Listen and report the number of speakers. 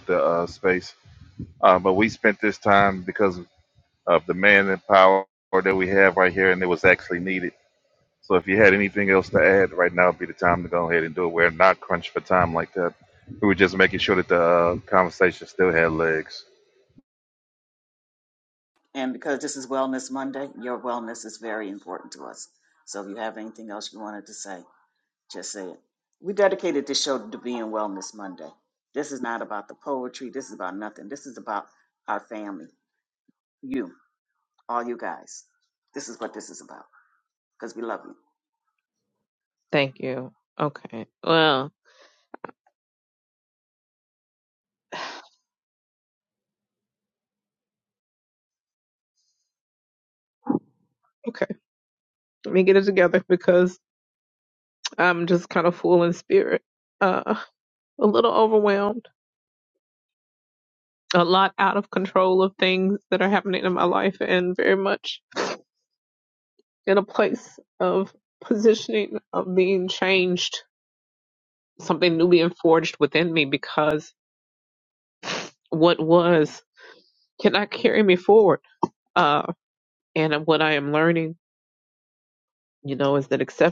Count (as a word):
three